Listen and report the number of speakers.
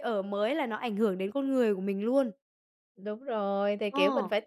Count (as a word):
two